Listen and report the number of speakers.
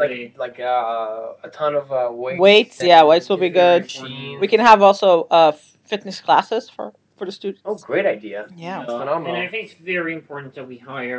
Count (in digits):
3